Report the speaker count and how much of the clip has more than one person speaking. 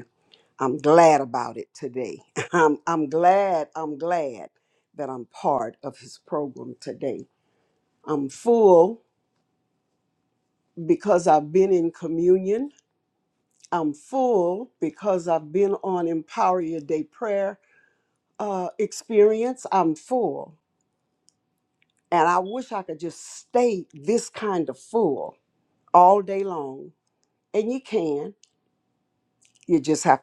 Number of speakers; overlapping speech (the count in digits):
1, no overlap